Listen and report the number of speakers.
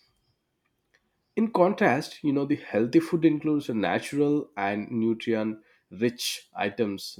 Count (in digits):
1